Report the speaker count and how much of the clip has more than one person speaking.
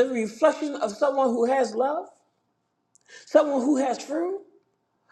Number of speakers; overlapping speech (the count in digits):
1, no overlap